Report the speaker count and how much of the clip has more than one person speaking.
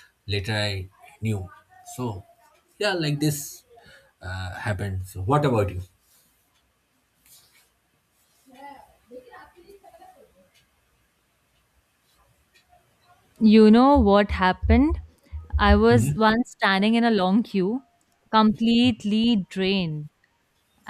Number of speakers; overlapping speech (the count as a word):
two, no overlap